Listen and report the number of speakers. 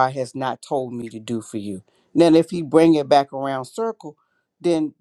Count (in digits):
1